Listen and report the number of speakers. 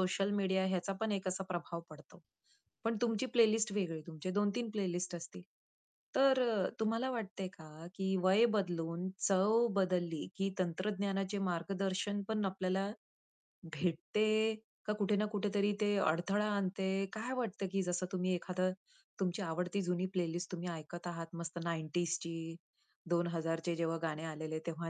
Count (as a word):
one